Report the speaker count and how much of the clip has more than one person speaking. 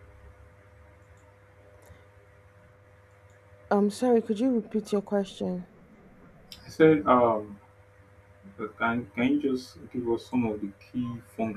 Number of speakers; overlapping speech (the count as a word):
two, no overlap